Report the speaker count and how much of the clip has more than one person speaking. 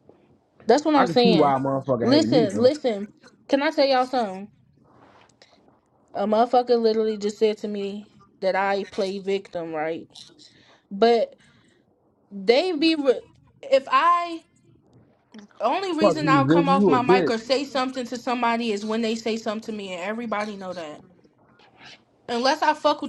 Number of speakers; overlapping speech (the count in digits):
2, about 12%